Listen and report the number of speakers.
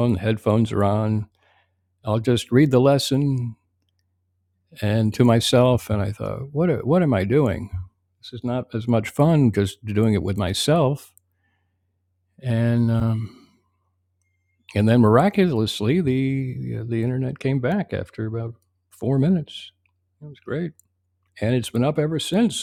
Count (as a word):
one